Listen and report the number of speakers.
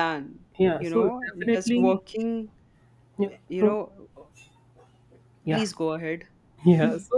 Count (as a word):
two